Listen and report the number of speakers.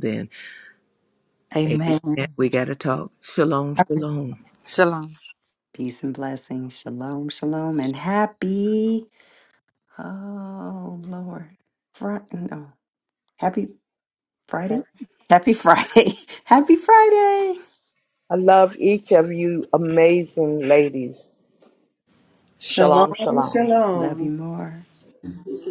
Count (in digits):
5